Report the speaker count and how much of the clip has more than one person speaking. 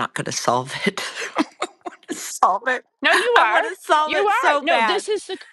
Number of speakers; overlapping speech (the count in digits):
2, about 23%